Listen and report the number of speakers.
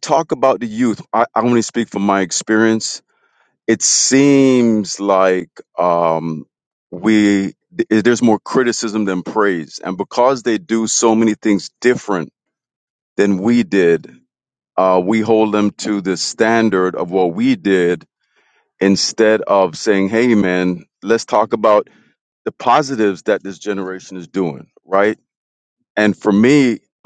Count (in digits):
1